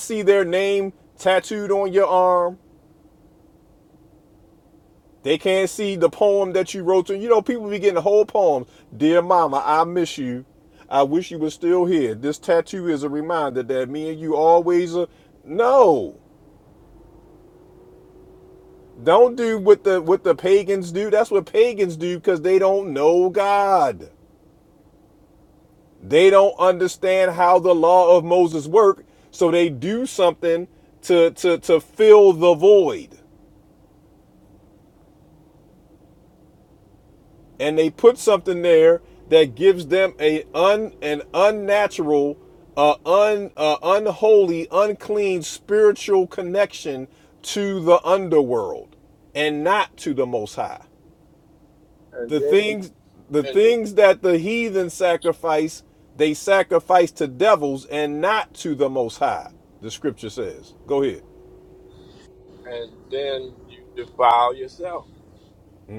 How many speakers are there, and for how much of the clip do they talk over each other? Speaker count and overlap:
2, about 1%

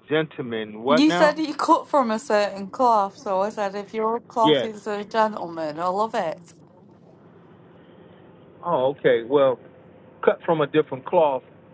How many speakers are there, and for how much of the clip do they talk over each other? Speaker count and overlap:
2, about 6%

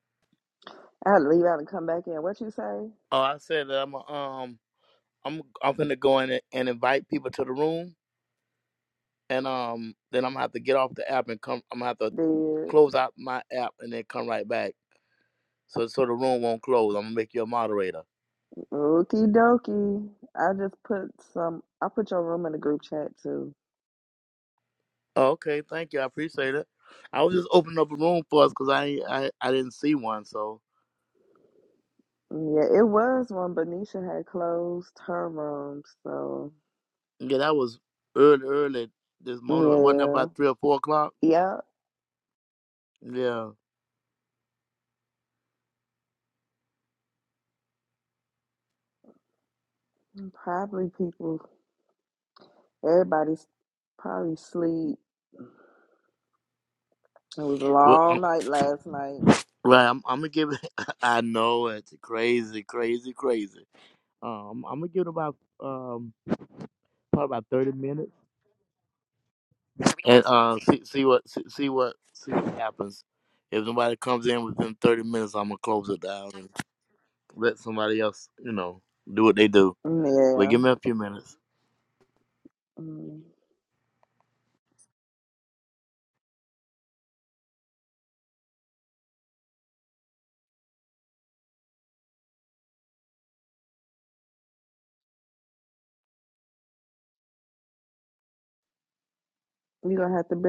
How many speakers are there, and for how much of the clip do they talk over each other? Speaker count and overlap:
2, about 1%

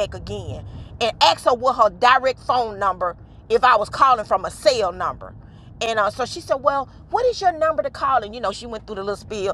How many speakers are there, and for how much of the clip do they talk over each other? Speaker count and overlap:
1, no overlap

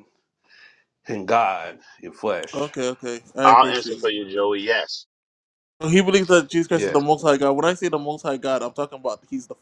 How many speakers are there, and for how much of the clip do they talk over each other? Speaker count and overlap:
3, about 12%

